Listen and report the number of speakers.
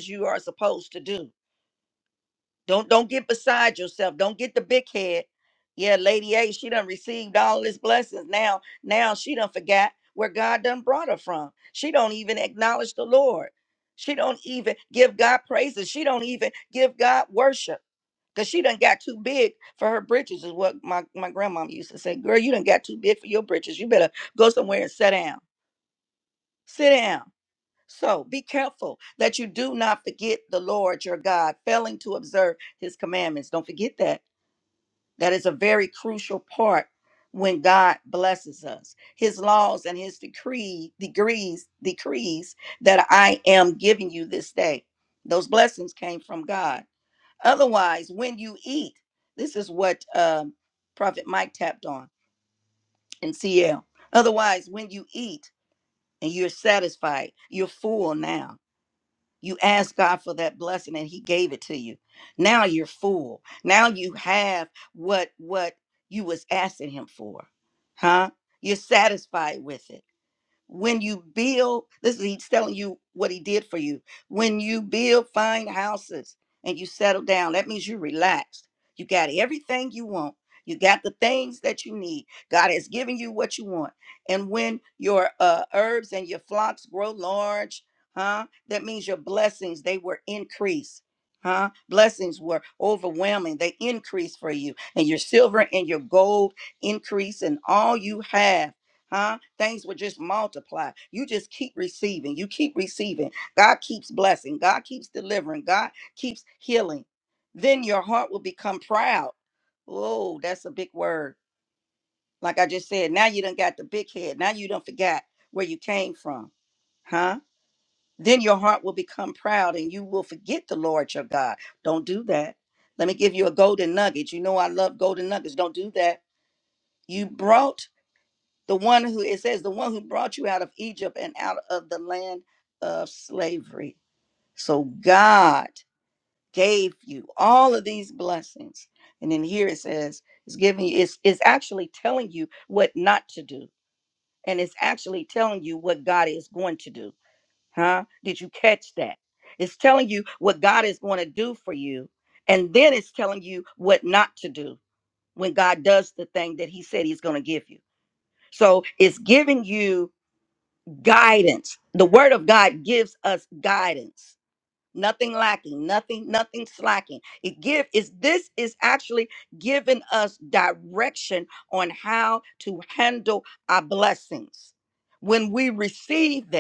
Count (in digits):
1